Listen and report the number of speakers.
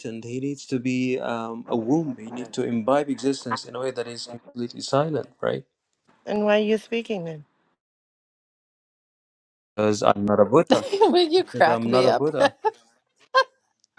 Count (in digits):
3